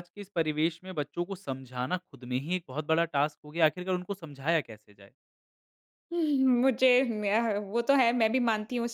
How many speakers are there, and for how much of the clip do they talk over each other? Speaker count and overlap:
two, no overlap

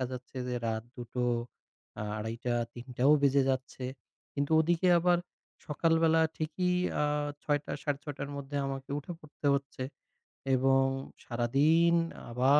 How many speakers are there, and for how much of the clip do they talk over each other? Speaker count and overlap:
one, no overlap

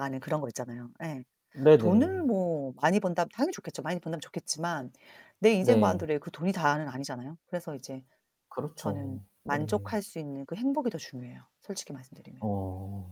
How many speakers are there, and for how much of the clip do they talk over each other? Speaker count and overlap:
two, about 12%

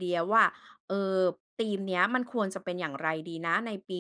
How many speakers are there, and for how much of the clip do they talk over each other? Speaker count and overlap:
one, no overlap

